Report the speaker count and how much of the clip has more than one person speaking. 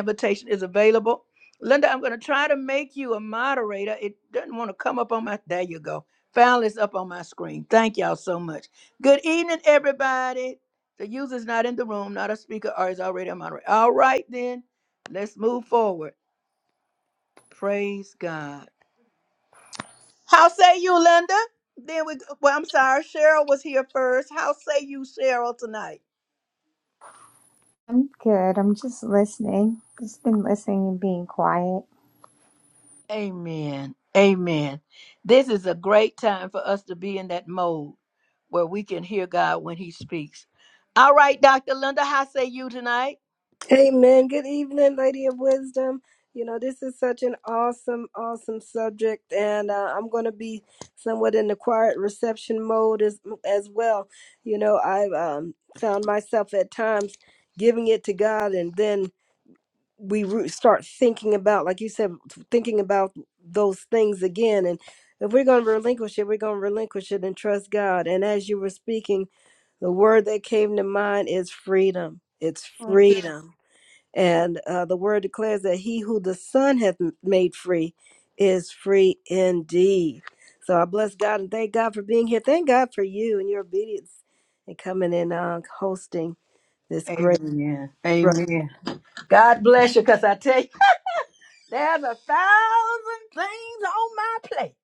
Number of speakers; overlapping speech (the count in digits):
3, under 1%